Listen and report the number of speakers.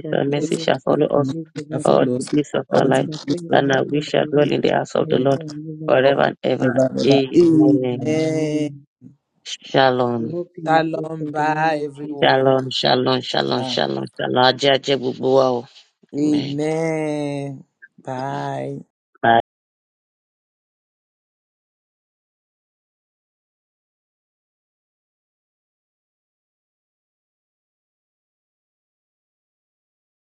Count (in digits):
3